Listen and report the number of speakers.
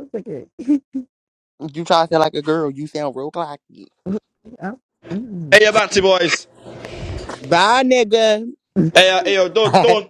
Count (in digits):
3